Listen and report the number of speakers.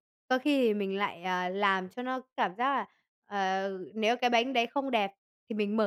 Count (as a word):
one